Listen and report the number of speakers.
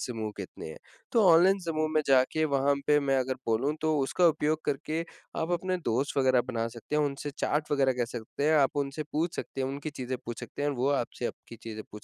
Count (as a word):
one